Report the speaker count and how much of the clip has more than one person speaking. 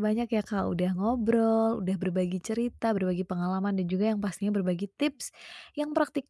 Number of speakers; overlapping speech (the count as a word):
one, no overlap